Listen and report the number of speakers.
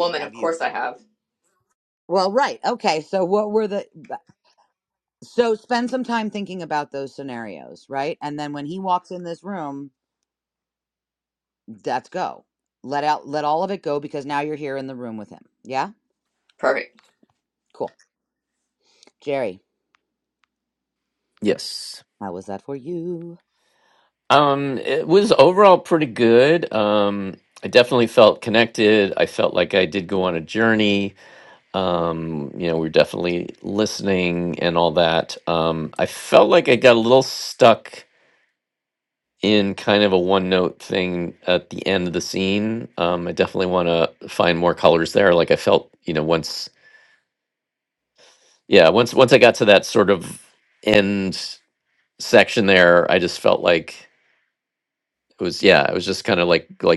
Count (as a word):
three